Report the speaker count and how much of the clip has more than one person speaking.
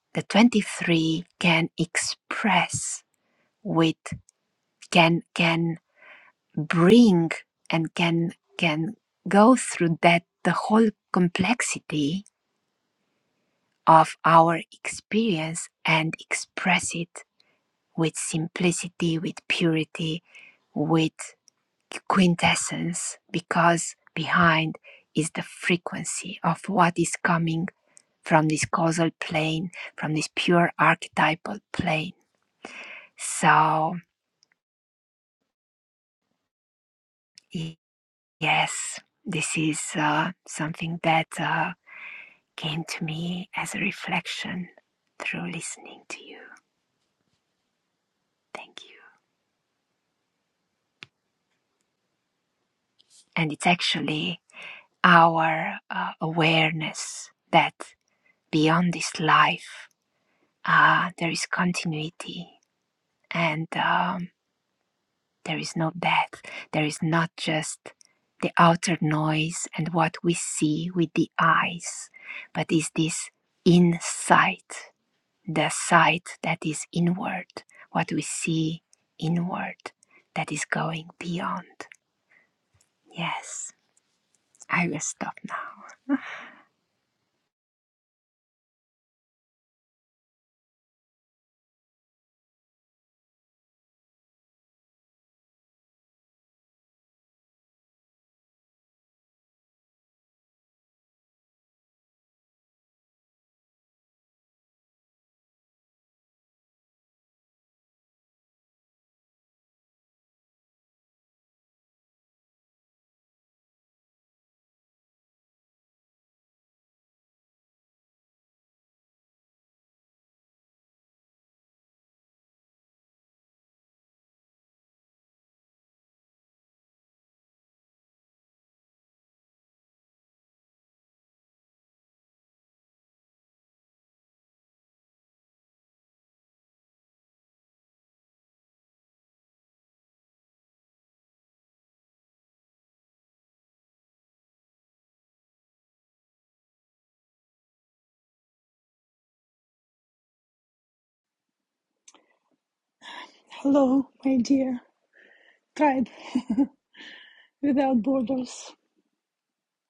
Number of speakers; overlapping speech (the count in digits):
2, no overlap